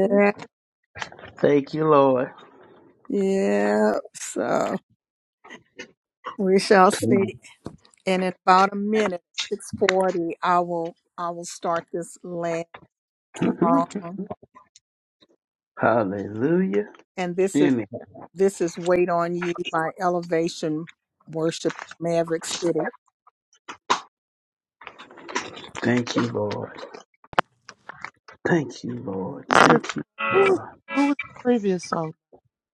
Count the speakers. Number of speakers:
three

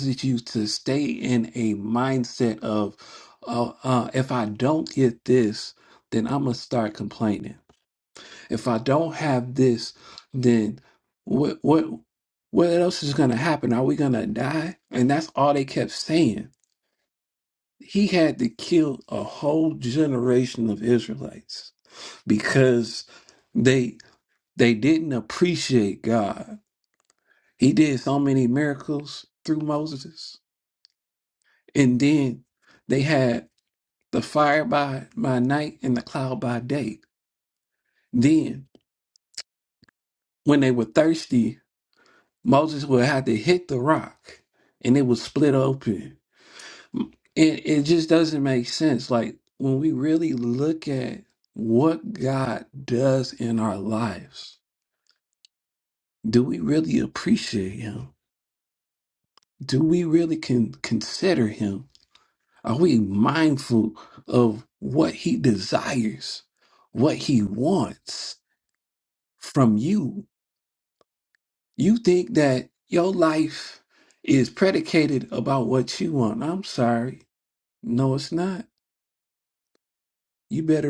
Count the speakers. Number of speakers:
one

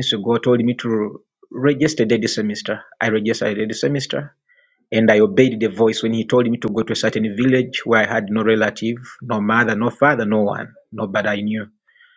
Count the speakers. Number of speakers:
one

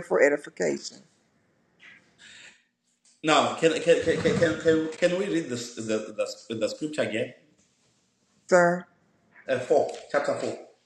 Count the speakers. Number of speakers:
two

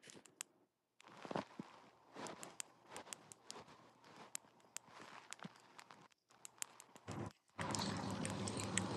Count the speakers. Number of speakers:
zero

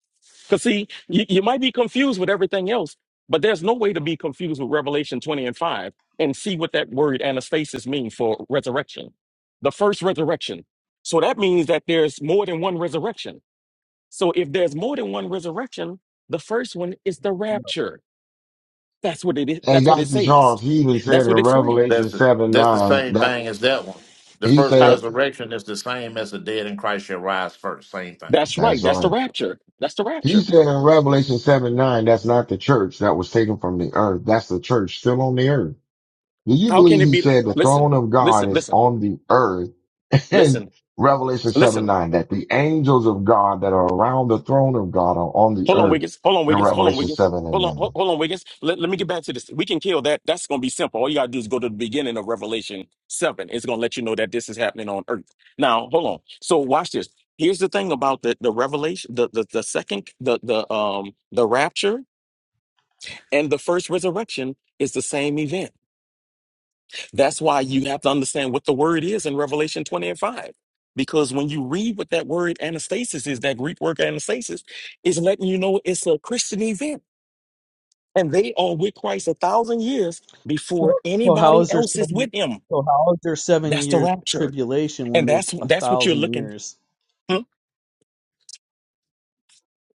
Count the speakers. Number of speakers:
four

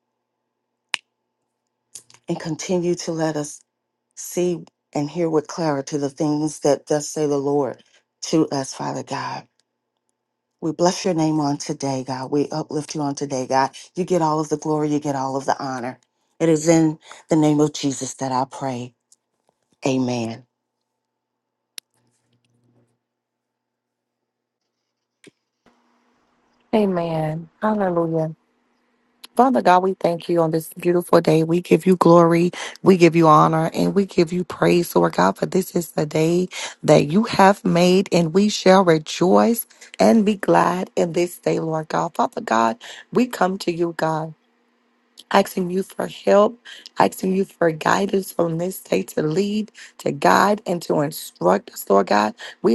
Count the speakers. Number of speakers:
two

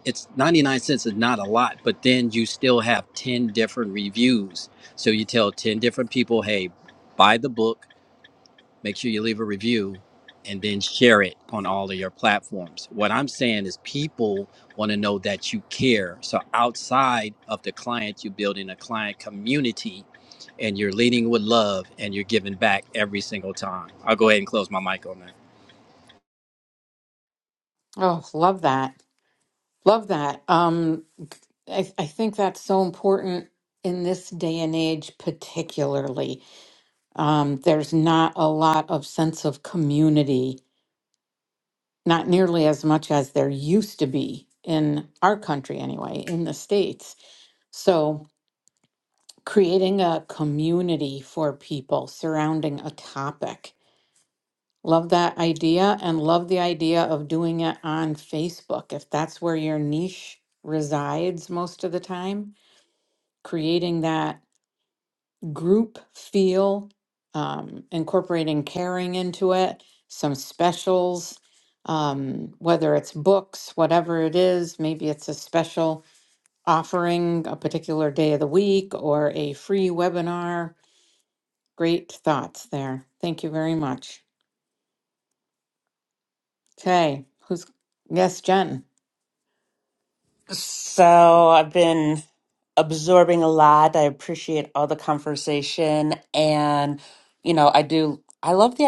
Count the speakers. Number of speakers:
three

